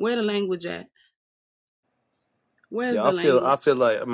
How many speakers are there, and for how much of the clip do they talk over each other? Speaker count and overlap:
2, about 15%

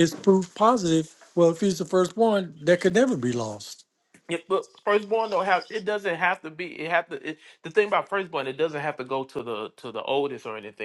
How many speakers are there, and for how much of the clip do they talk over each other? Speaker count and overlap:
2, no overlap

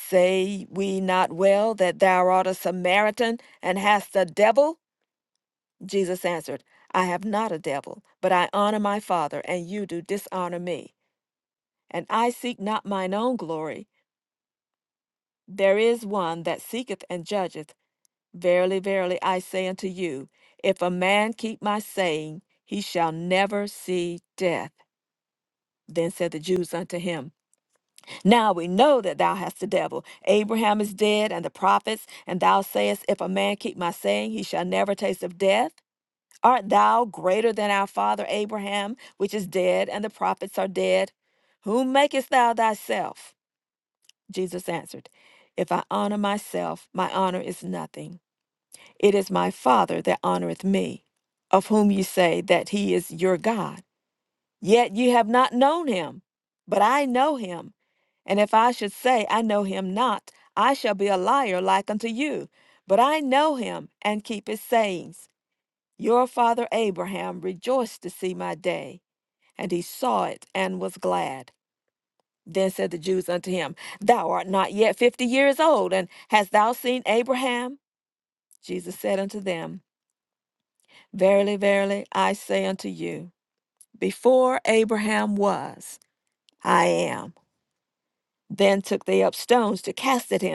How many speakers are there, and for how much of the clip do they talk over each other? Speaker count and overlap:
1, no overlap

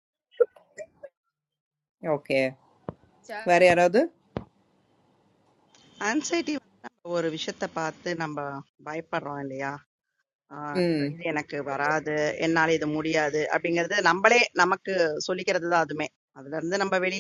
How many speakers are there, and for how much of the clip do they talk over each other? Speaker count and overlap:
2, about 2%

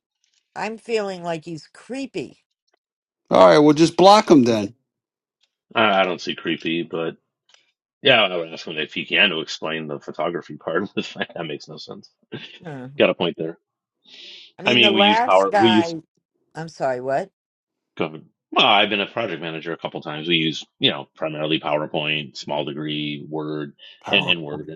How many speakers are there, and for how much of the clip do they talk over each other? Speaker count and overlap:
3, about 5%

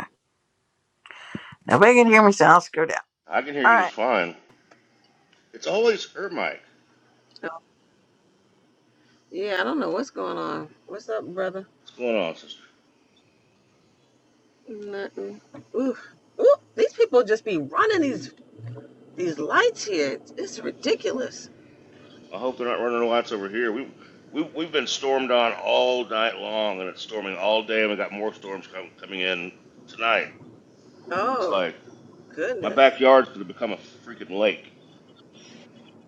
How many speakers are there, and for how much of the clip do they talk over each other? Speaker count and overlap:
3, about 2%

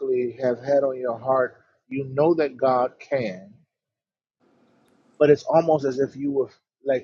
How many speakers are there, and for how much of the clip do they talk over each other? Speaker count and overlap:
1, no overlap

